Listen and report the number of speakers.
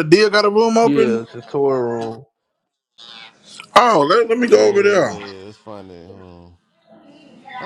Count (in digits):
3